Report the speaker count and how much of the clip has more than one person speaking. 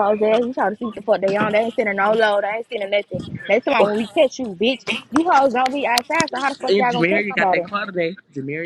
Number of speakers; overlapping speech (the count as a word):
two, about 11%